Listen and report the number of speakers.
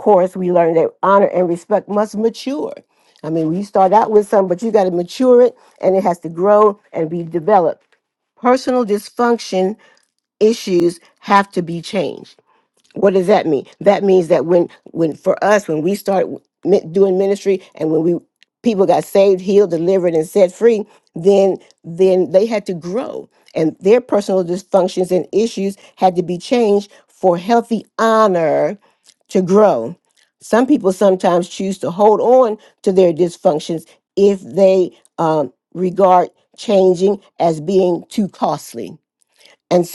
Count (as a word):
one